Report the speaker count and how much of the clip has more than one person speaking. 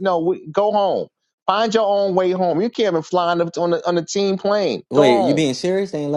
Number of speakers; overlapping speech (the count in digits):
2, about 8%